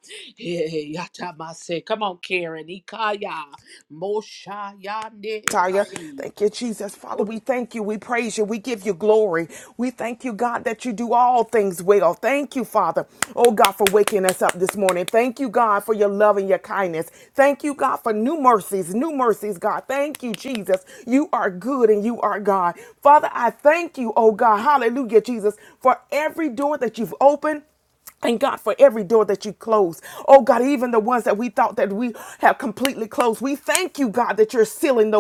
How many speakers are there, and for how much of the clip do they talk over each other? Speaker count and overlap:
two, about 1%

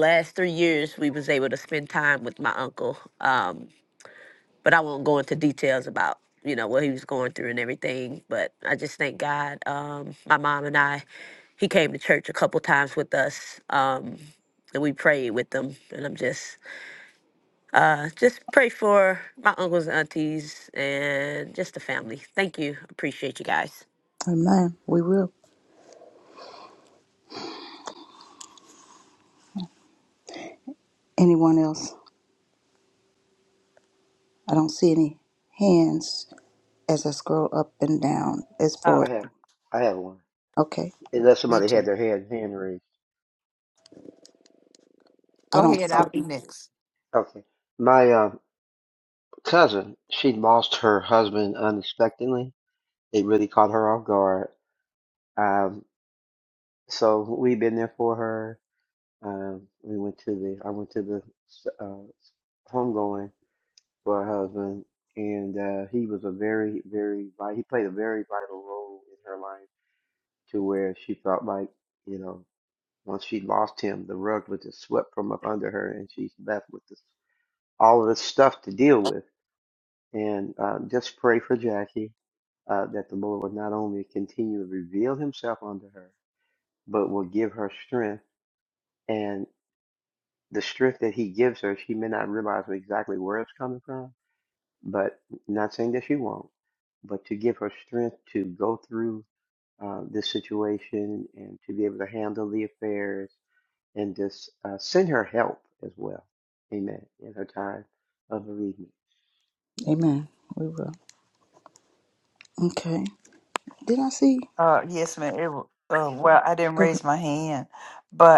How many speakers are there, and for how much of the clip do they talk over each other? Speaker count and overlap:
four, about 1%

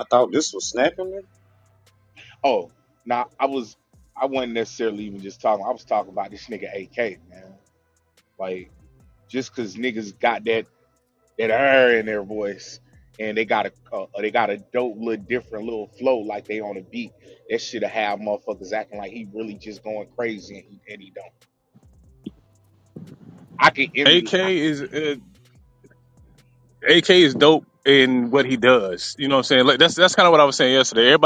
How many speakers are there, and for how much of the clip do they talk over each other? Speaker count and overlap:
three, about 1%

